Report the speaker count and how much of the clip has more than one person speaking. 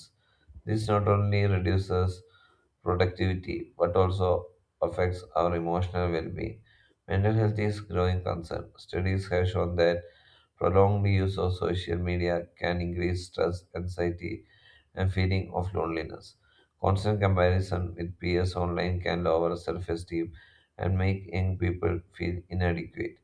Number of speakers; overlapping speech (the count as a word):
one, no overlap